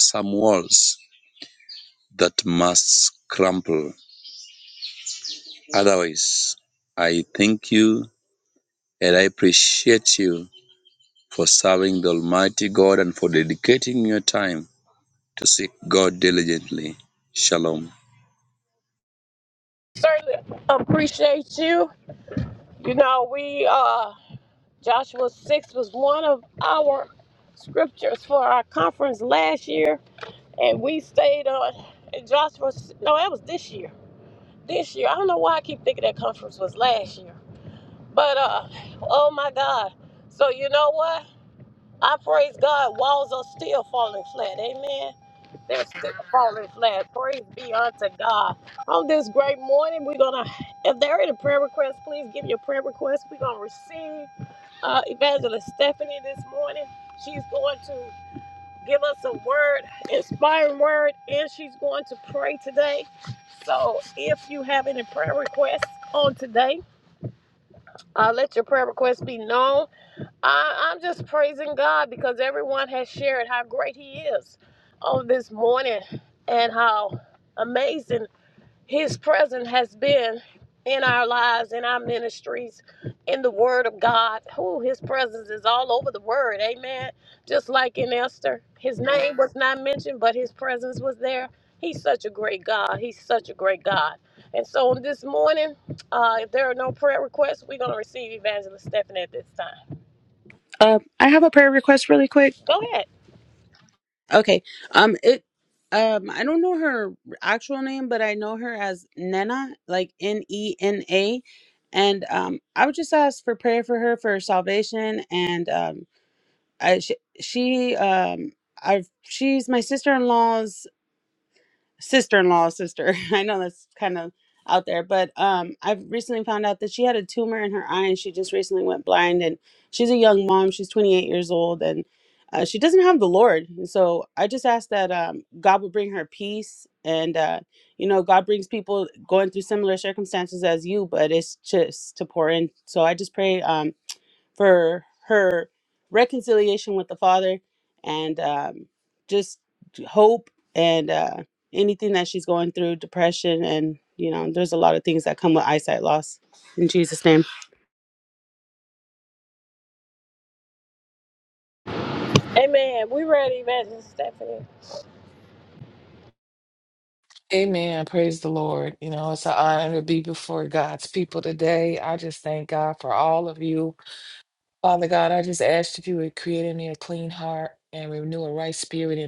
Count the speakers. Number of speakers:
four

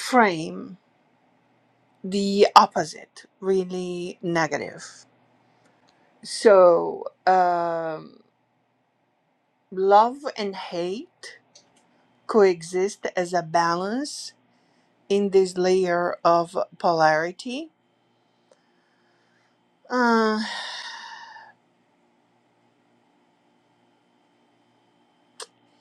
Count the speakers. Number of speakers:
one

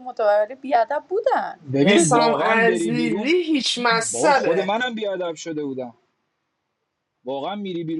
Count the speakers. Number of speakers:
three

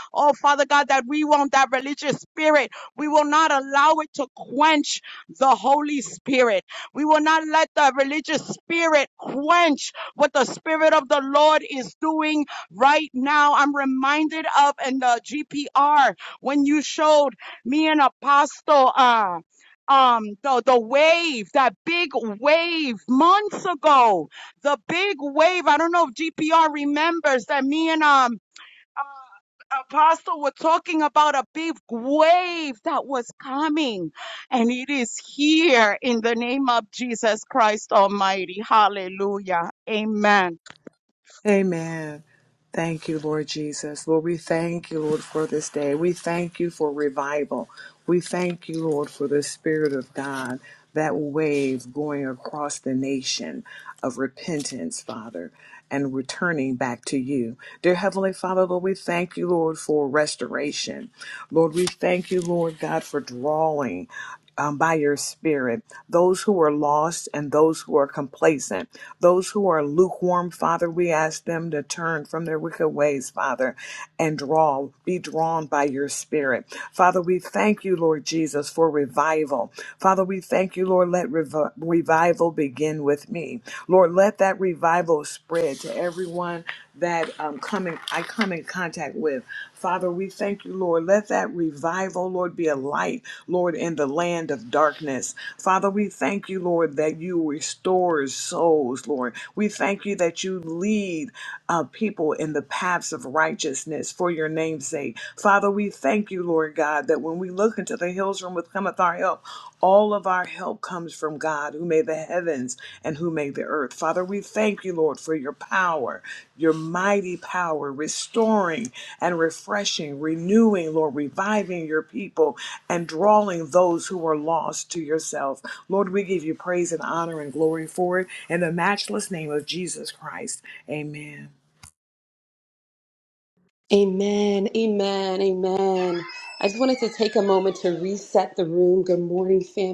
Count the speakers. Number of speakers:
three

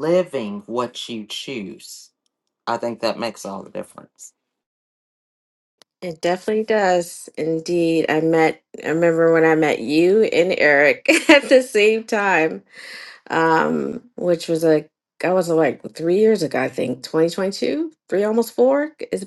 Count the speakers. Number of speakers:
two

